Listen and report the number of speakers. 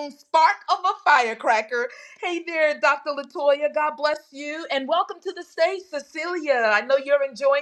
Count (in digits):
1